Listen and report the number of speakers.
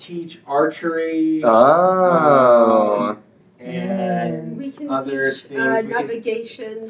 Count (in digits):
3